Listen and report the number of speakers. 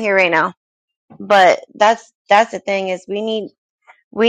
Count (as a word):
one